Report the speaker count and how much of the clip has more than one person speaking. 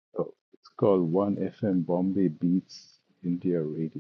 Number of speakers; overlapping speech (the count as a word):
one, no overlap